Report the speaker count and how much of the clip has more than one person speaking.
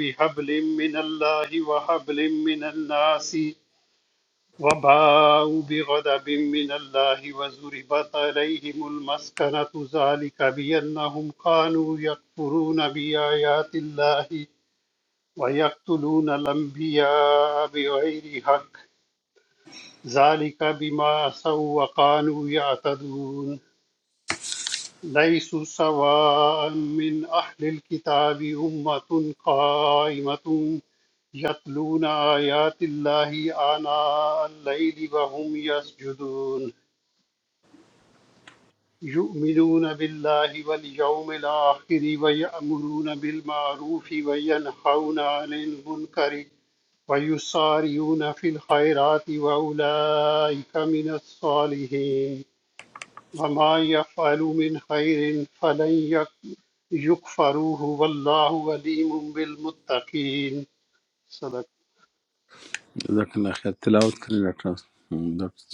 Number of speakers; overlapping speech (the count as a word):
two, no overlap